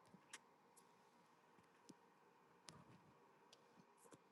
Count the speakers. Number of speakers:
0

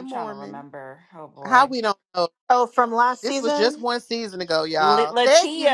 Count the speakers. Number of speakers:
3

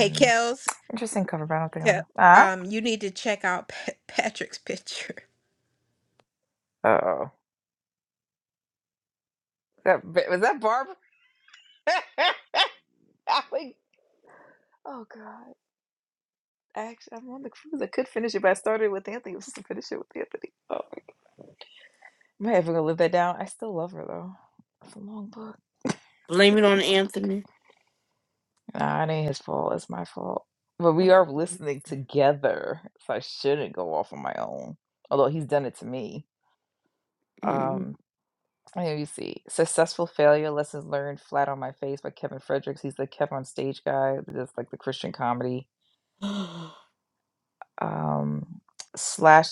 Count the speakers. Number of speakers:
3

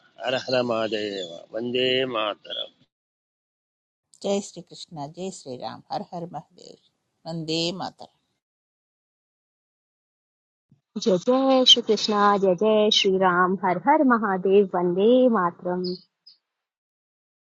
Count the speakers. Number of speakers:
3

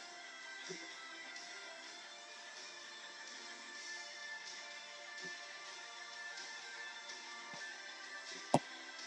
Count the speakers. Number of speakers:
0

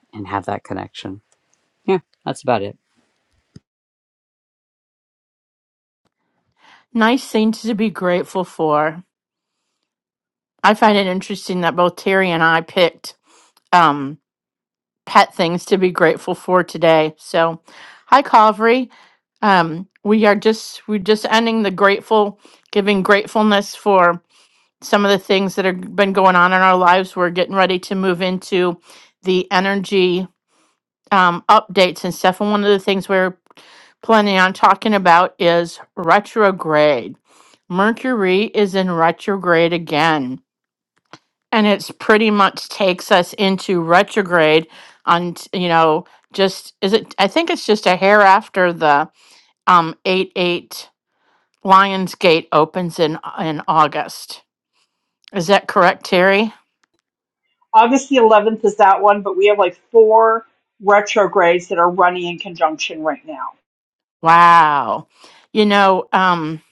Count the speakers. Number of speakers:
3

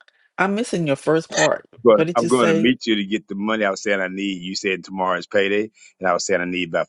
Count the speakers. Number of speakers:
2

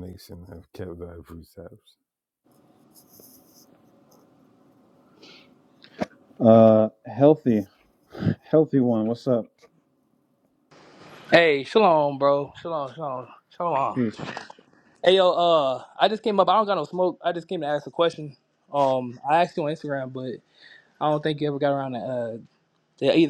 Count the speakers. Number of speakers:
3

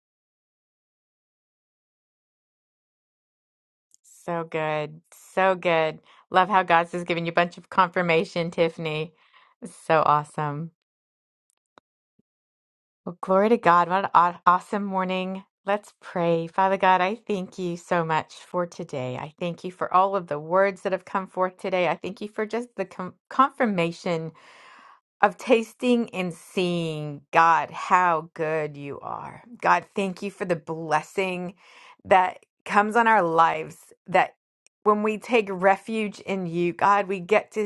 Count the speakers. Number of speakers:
1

